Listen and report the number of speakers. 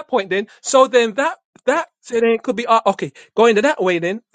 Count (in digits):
1